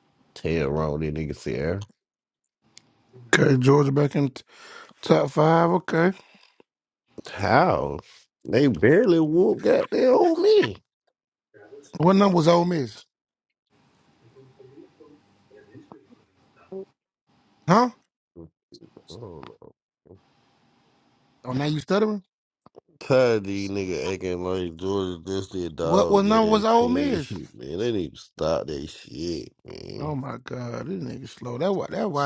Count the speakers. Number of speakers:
two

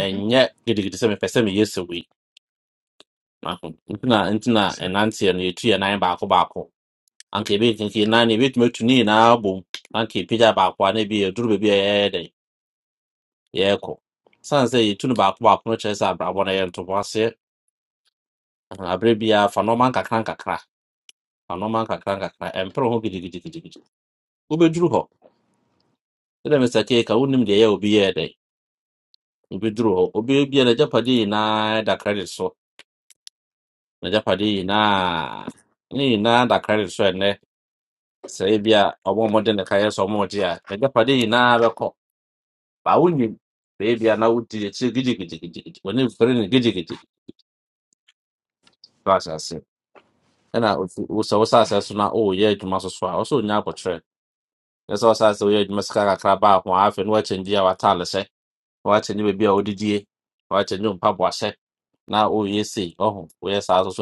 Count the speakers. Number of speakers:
one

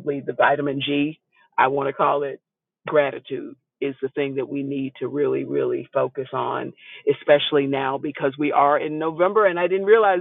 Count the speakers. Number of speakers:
one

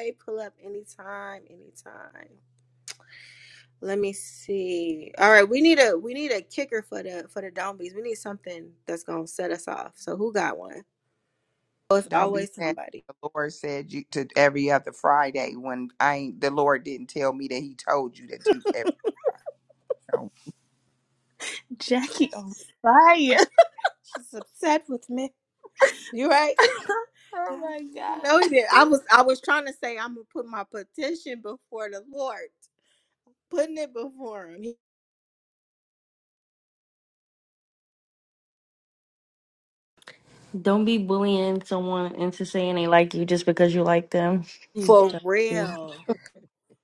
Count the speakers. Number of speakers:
four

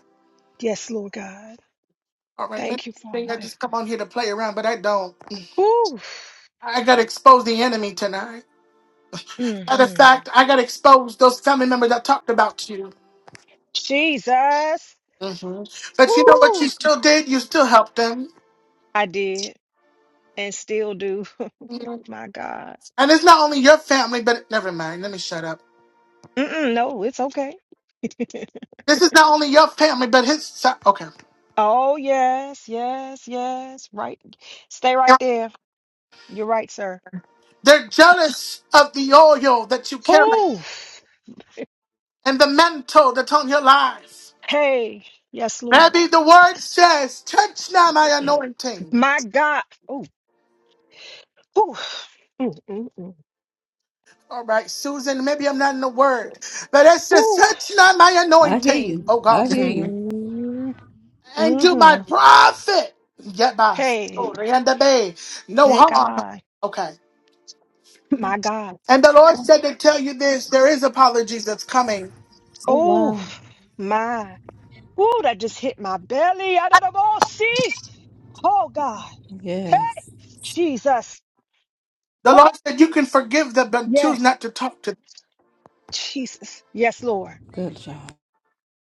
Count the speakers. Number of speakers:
three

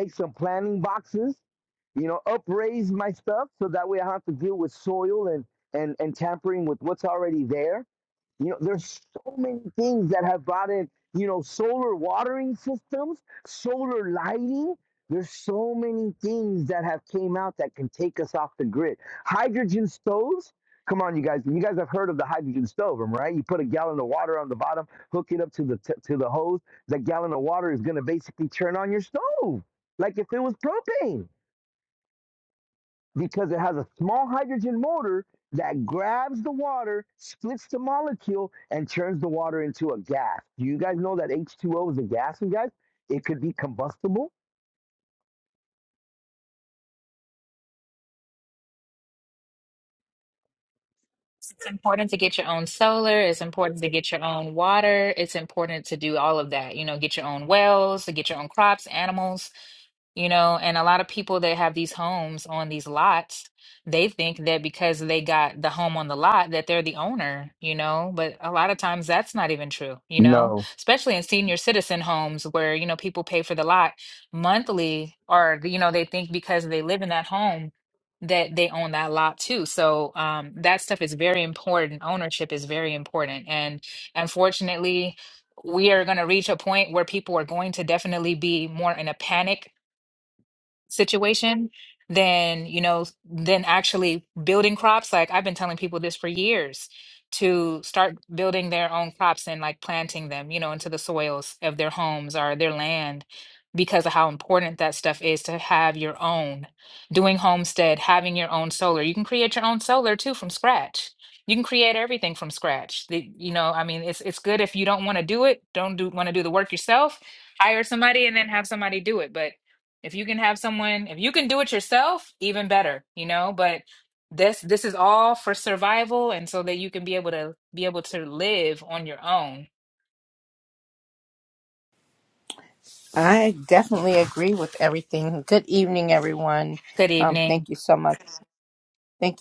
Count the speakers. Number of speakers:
three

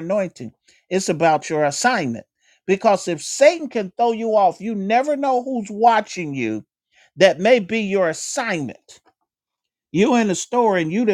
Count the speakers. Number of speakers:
one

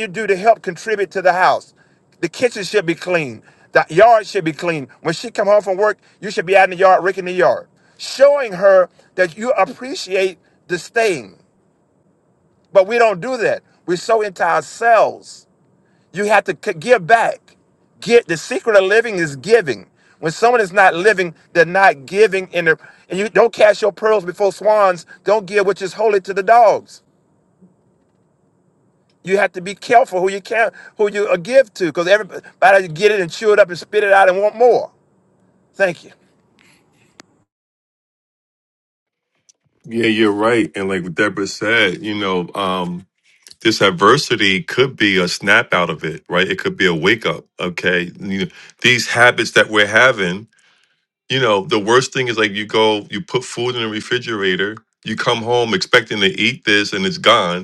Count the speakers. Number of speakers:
two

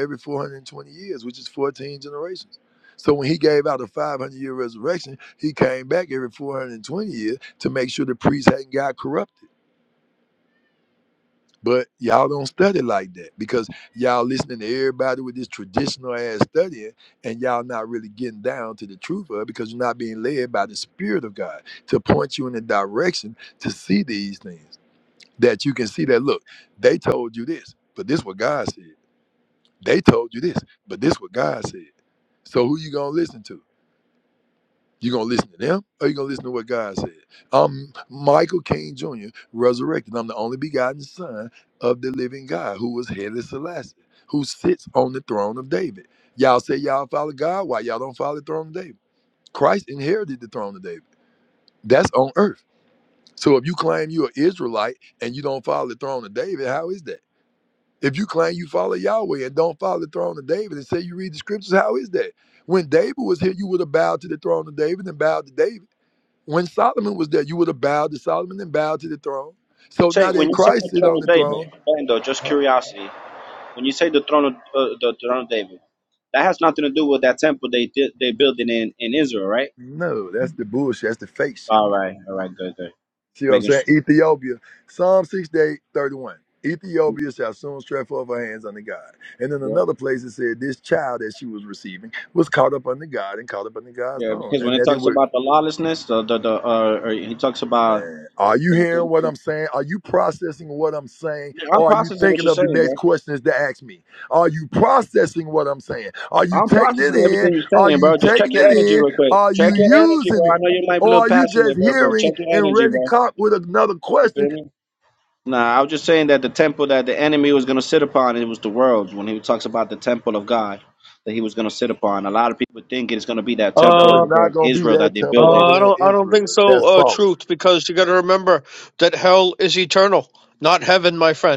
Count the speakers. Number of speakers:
three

